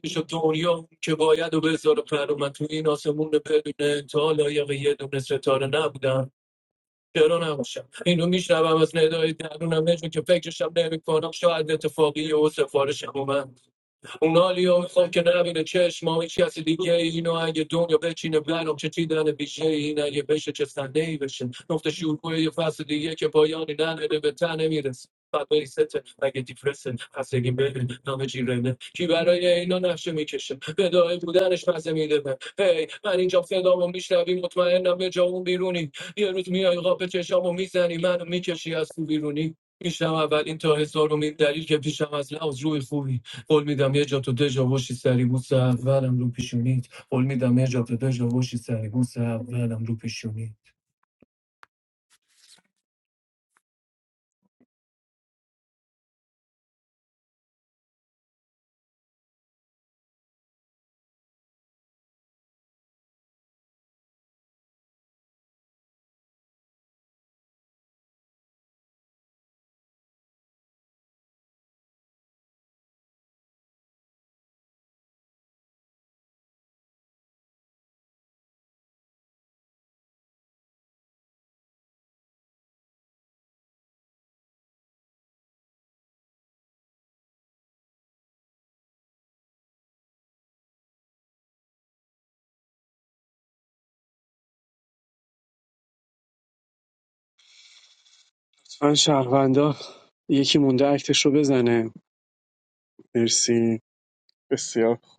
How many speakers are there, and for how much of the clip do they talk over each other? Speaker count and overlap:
2, no overlap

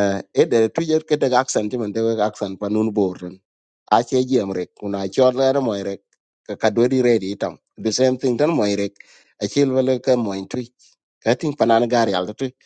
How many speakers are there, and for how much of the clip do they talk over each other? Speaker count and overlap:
1, no overlap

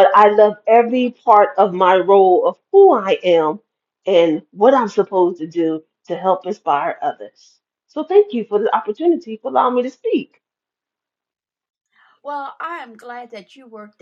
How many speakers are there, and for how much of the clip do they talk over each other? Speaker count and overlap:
2, no overlap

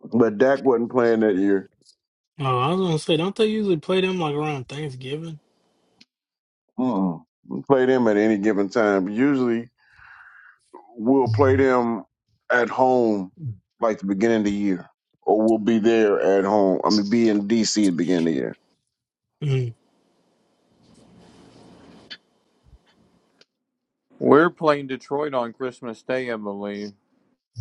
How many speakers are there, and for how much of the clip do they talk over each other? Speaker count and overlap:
3, no overlap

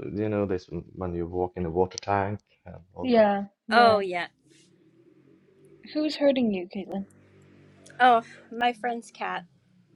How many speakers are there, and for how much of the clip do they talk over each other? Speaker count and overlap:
3, about 5%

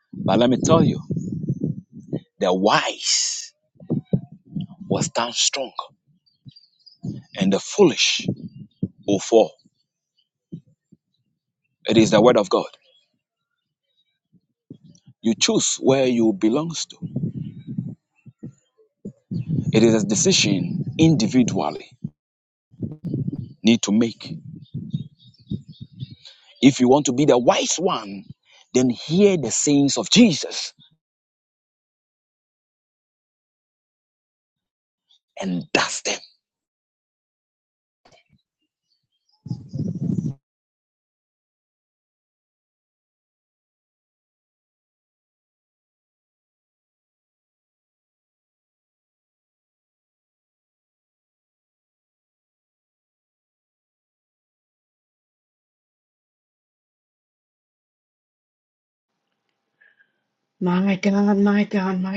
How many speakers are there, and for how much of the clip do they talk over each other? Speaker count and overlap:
2, no overlap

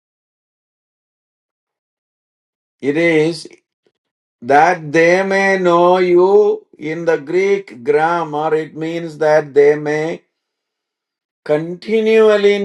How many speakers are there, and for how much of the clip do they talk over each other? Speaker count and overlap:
1, no overlap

